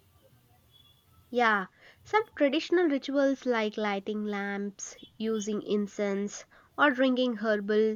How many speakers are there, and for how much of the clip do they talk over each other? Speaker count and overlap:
one, no overlap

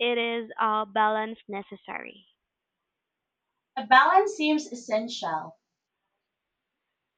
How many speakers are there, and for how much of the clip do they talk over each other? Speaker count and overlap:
two, no overlap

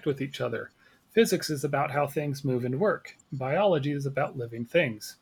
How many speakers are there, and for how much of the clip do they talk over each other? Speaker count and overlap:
one, no overlap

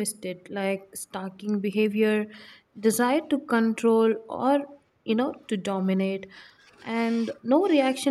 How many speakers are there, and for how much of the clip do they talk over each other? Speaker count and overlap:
one, no overlap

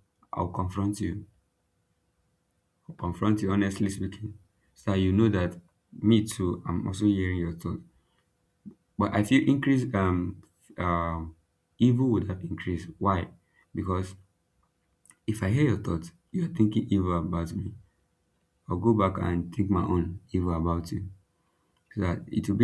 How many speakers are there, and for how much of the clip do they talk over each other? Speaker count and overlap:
one, no overlap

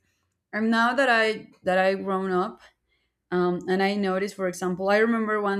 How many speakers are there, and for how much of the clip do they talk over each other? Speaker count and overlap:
one, no overlap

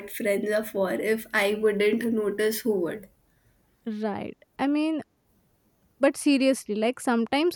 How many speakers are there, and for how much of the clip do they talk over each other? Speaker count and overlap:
two, no overlap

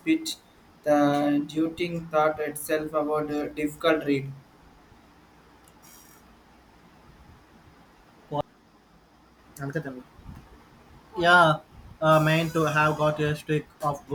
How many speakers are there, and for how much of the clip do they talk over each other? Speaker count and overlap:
two, no overlap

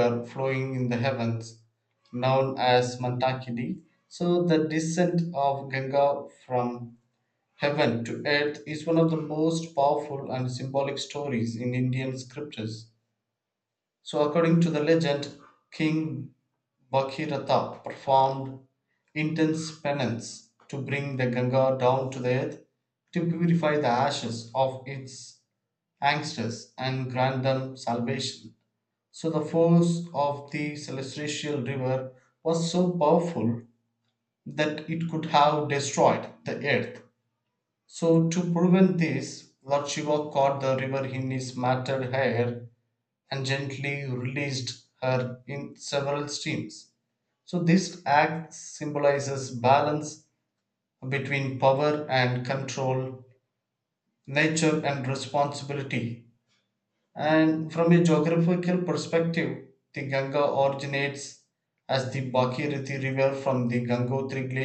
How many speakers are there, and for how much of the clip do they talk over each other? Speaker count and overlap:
one, no overlap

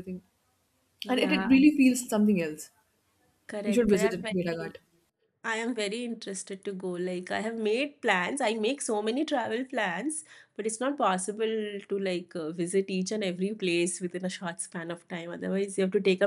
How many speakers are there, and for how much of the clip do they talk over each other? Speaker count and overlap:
two, about 10%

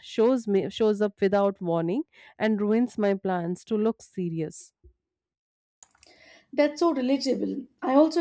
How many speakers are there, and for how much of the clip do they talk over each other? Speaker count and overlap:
two, no overlap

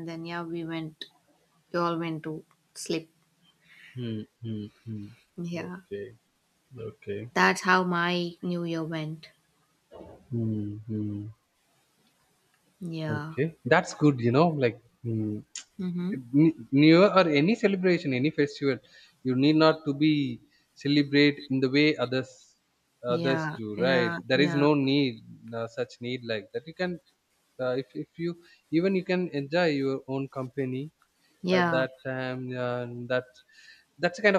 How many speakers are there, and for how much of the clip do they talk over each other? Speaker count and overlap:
two, about 7%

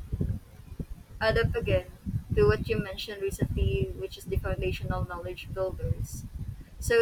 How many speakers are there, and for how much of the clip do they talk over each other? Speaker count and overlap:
one, no overlap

